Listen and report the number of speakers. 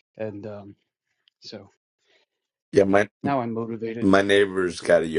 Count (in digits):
2